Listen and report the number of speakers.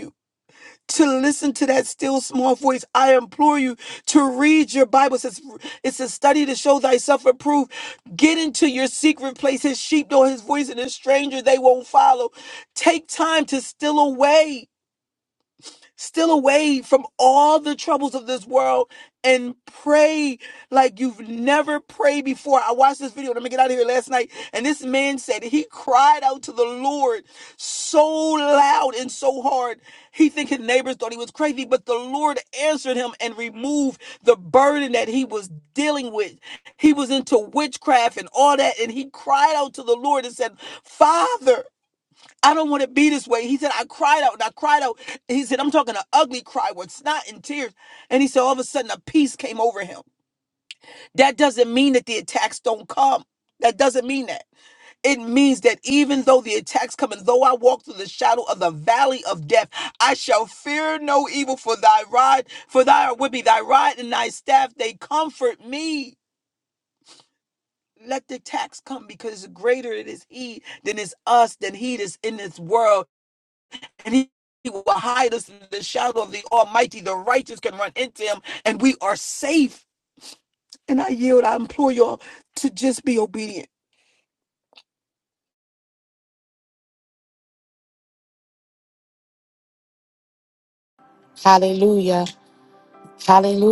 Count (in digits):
2